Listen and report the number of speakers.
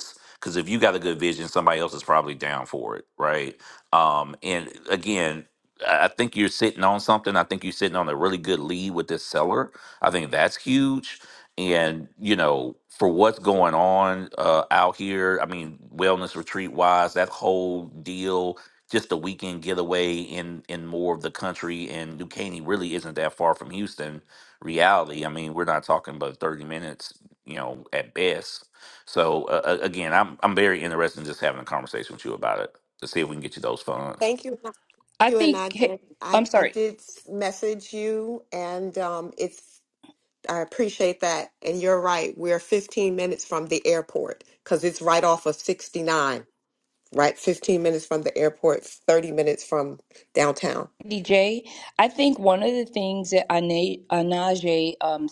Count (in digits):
3